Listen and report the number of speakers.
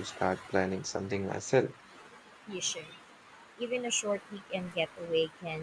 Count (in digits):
2